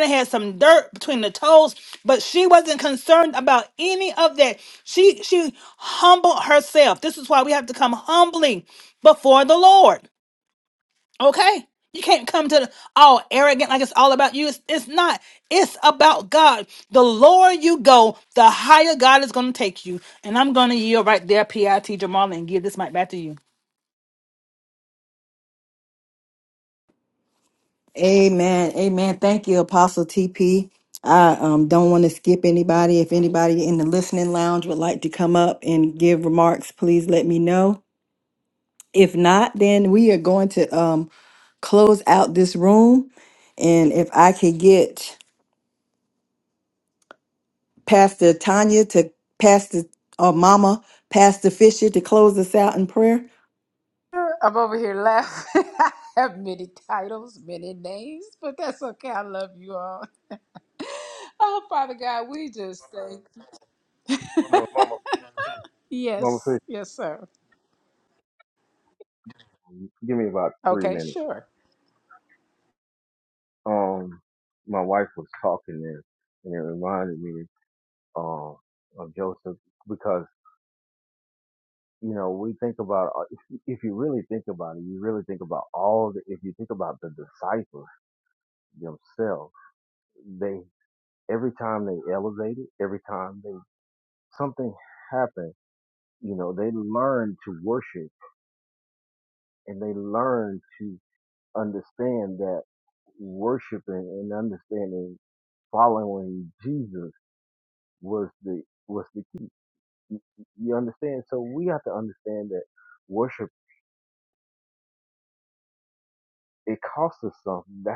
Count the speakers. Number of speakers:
four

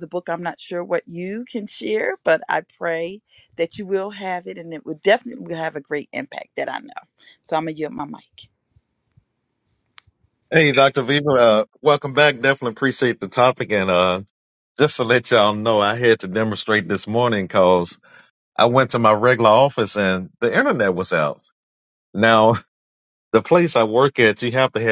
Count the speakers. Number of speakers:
two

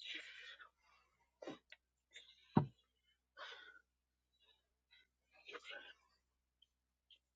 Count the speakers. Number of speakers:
zero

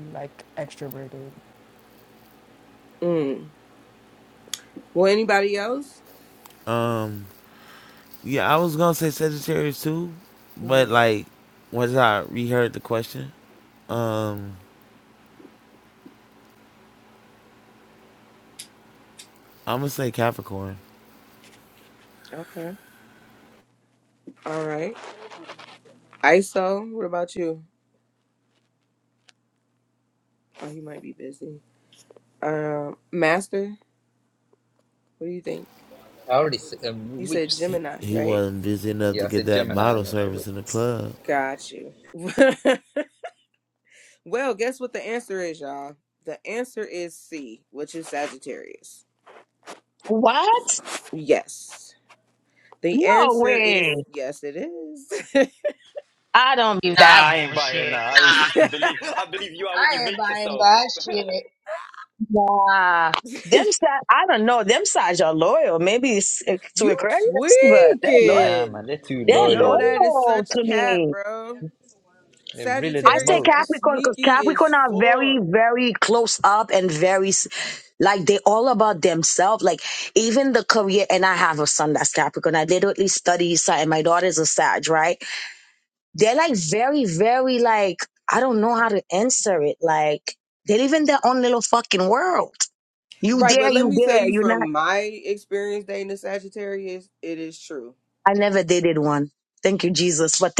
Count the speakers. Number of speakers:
five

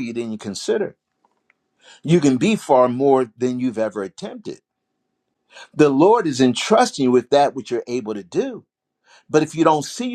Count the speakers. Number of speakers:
one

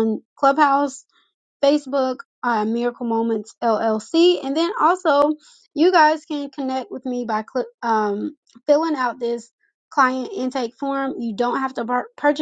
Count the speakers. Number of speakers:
one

